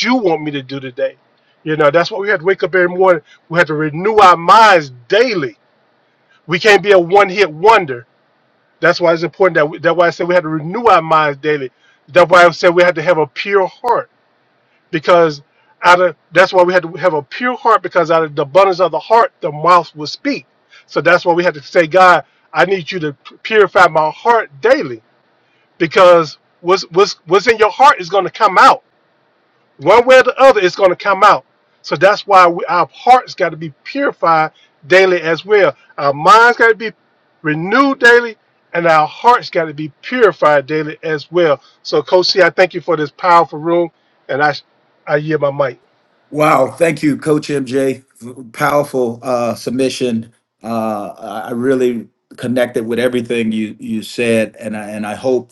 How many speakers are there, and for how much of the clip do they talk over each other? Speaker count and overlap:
2, no overlap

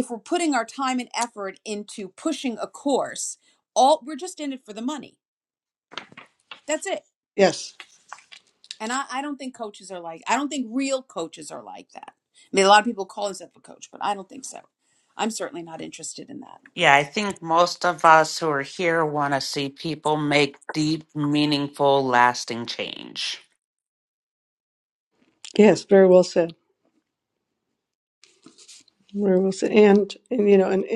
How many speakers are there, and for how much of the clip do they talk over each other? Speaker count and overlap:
3, no overlap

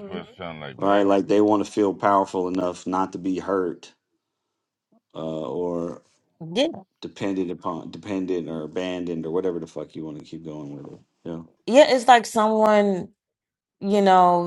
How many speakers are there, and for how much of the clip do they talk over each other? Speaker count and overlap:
3, about 2%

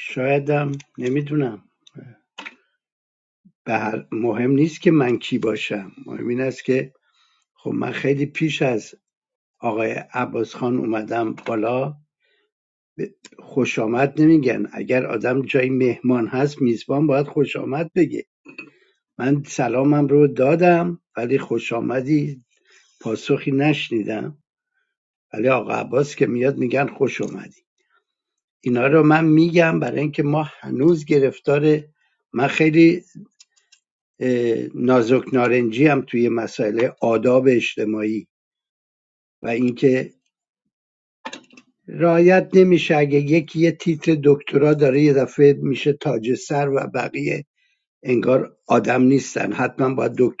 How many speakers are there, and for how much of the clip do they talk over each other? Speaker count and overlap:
1, no overlap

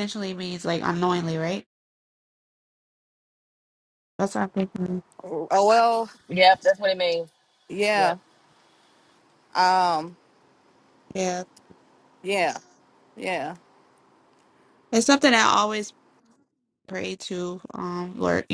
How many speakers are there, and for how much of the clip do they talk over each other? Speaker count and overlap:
3, about 1%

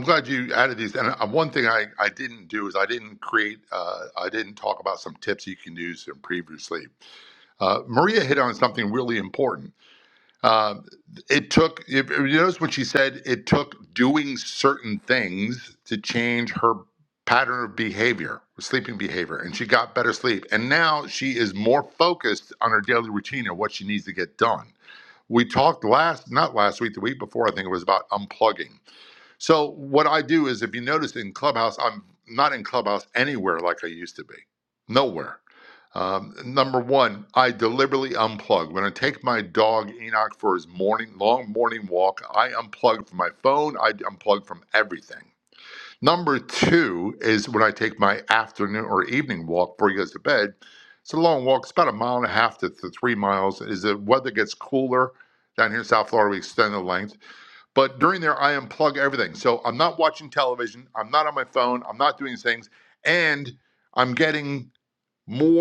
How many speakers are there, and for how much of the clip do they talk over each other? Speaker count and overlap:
1, no overlap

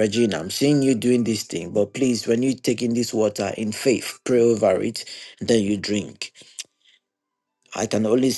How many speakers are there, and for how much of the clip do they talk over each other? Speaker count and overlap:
1, no overlap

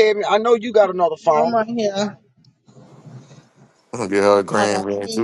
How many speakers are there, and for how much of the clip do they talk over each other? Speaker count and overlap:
3, about 19%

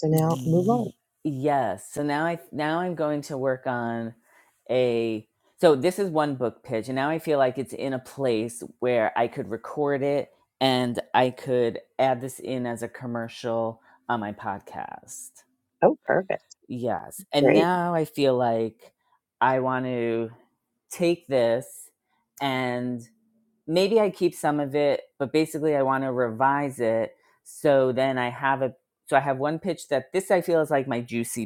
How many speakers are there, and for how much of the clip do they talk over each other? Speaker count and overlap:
2, about 3%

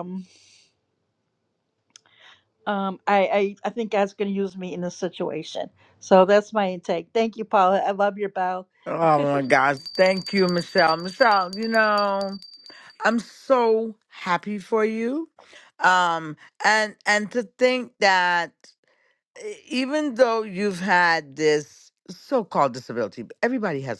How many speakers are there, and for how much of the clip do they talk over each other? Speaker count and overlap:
2, no overlap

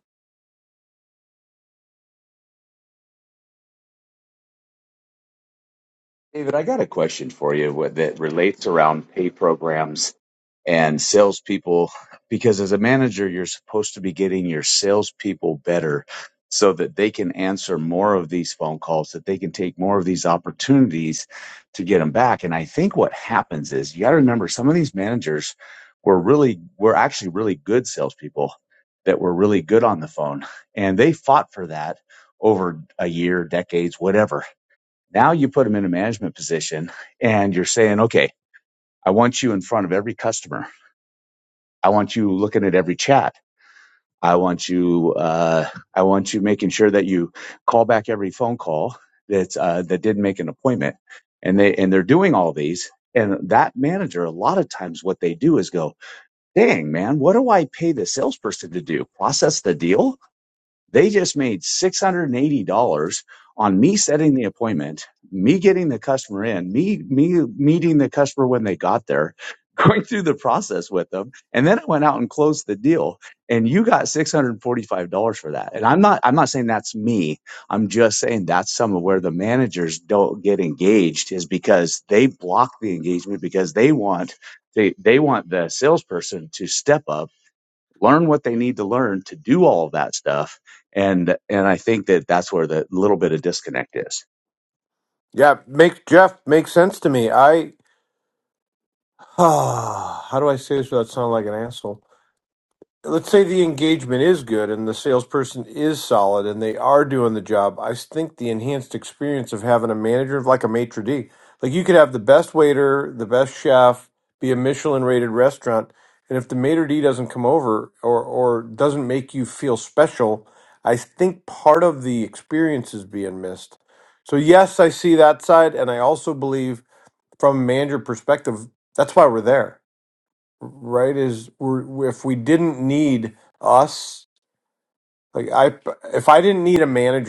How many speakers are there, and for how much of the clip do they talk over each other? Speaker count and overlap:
2, no overlap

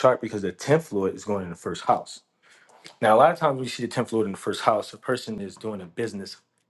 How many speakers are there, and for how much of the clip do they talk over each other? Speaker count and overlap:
1, no overlap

